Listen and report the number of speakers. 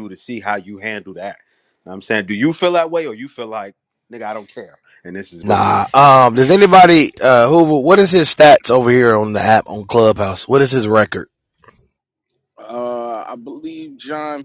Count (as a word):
three